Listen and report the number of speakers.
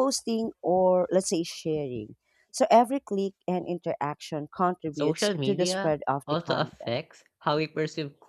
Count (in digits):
2